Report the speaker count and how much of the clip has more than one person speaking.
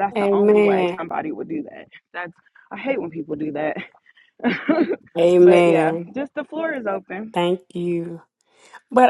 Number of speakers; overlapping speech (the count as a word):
two, about 16%